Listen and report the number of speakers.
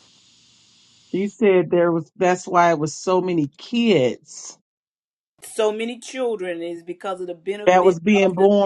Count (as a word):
two